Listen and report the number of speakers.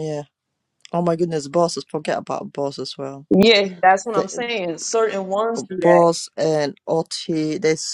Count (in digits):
2